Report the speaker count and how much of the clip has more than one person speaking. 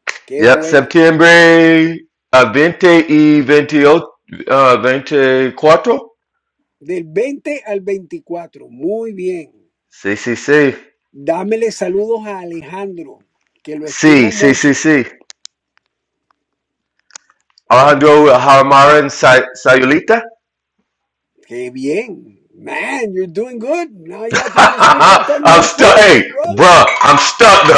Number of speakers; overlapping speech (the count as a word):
two, about 10%